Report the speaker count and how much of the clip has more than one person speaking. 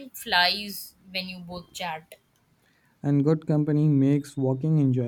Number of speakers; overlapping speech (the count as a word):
two, no overlap